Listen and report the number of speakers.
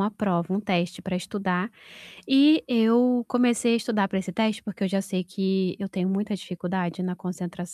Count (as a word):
one